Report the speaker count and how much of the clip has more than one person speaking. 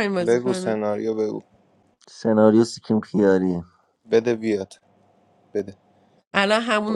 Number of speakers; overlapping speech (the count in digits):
3, about 9%